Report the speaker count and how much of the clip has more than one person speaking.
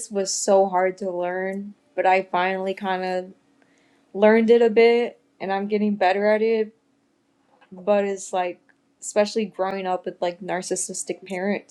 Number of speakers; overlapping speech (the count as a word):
one, no overlap